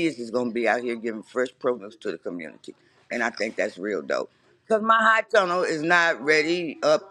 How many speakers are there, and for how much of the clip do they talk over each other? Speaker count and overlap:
1, no overlap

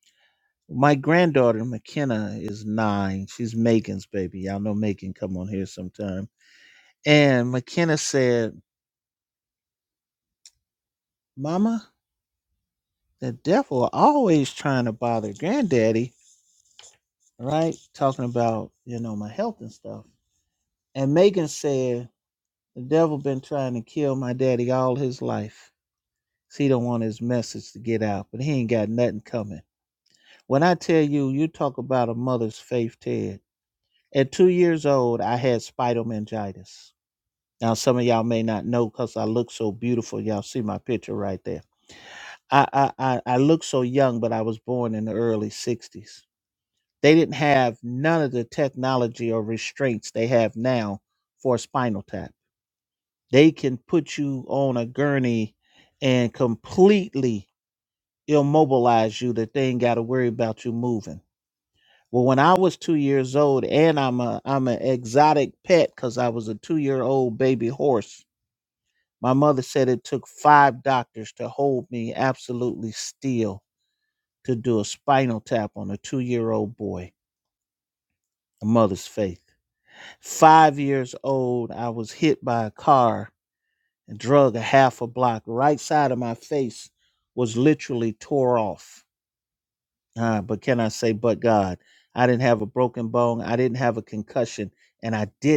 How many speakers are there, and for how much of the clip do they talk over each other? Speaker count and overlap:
1, no overlap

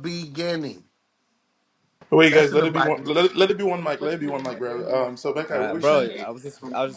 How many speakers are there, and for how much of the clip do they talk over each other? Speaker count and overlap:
3, about 21%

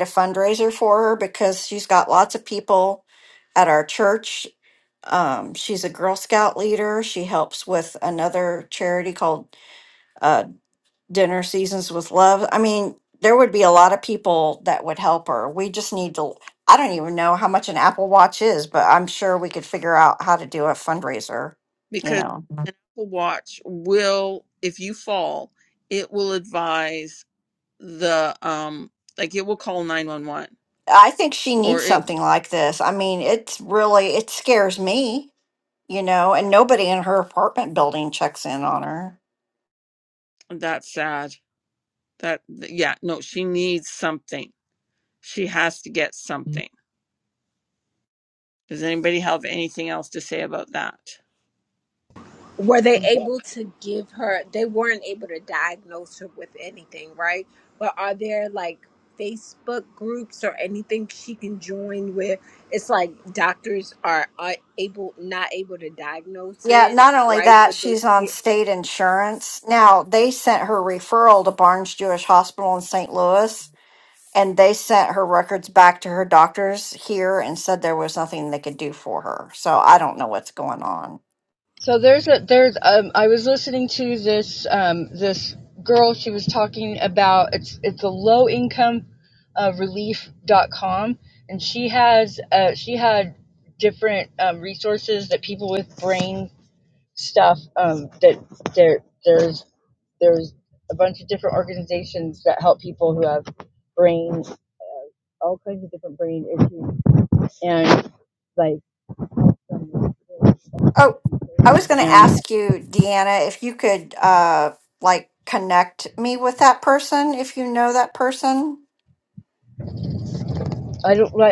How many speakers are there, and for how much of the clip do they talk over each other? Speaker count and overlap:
4, about 2%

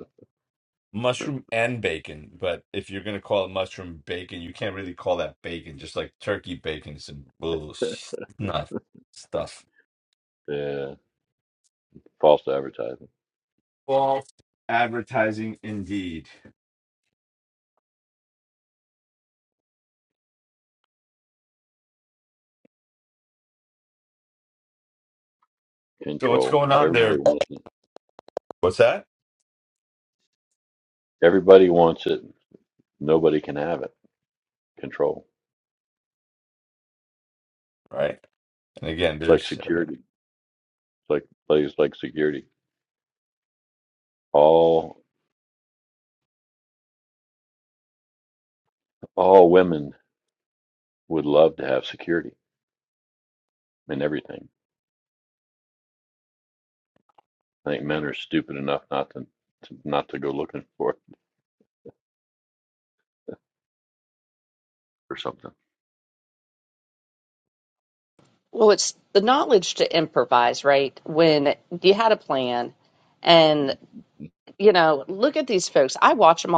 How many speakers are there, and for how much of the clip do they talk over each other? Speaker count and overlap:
3, about 2%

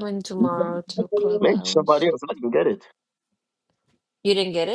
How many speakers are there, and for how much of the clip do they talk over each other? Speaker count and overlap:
2, about 31%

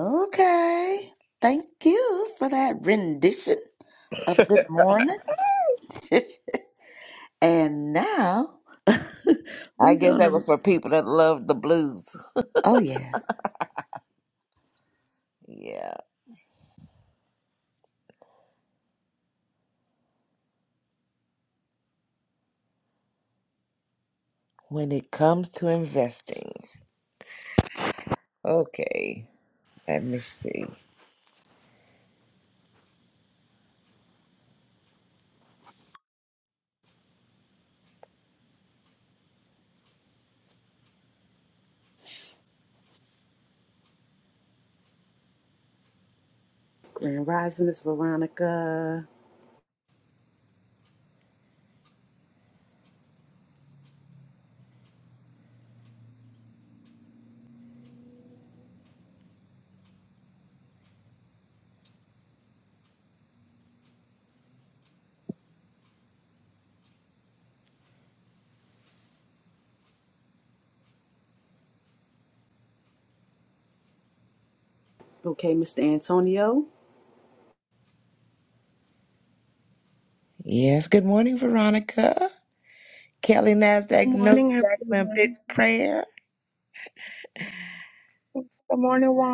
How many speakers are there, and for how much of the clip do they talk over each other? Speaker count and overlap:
4, about 2%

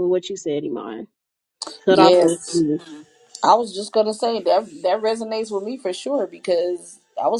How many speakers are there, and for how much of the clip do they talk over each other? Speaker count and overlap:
2, about 9%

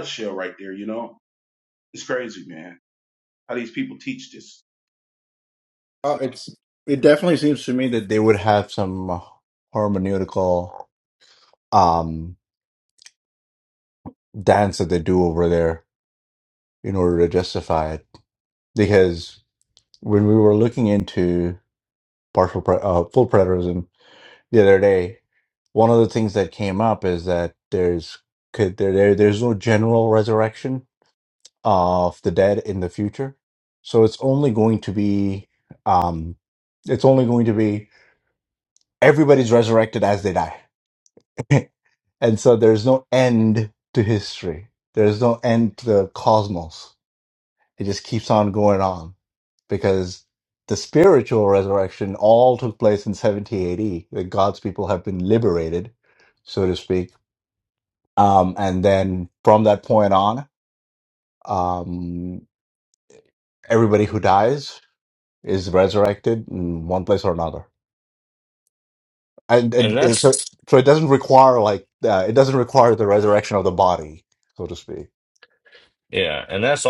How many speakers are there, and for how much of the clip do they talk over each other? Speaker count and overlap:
3, about 1%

